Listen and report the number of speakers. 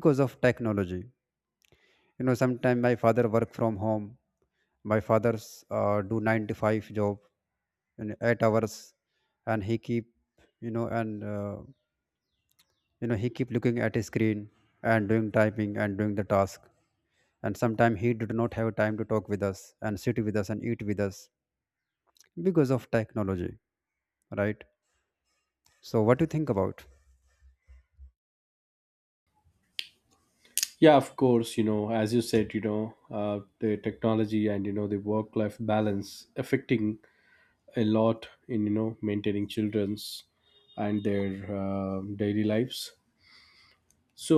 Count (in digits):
2